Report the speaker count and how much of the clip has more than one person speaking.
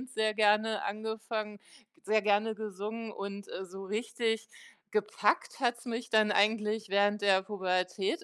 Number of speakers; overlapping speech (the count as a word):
one, no overlap